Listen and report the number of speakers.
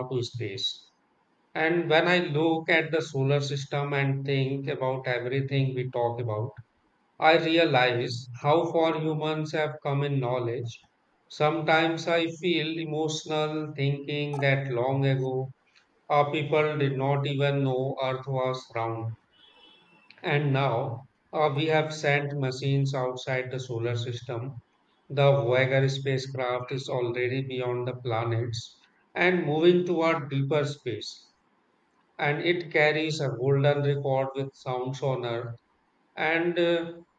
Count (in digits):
1